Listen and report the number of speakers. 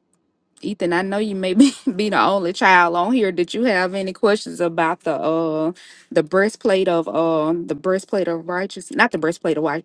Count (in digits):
1